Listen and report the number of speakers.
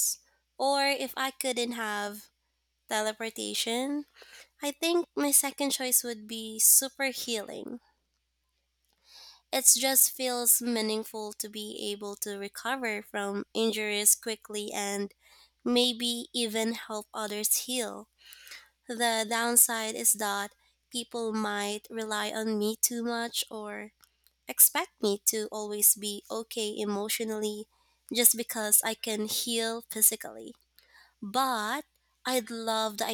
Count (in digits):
1